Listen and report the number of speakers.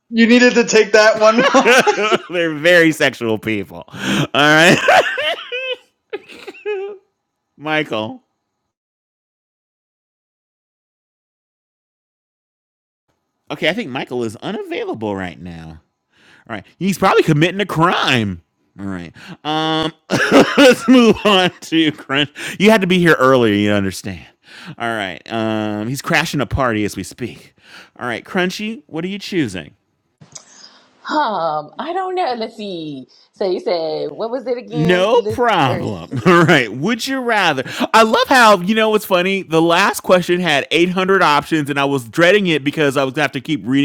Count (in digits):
3